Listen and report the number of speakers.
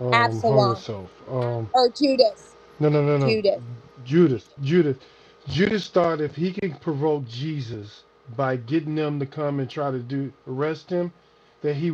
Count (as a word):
two